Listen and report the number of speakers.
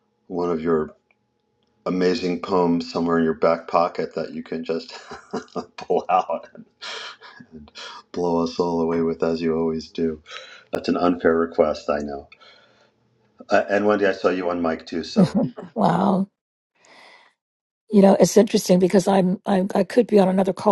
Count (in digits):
2